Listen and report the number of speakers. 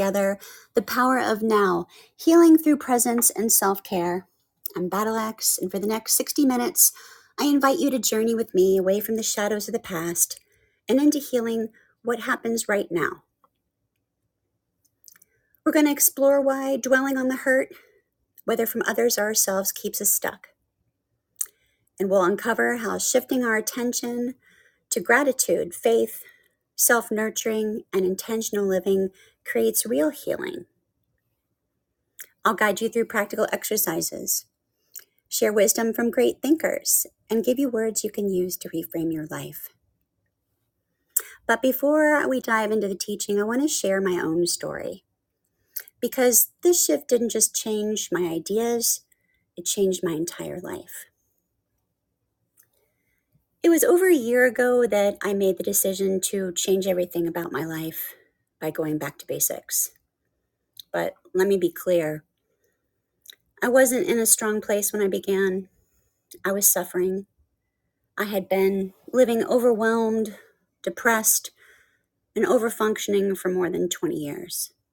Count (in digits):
1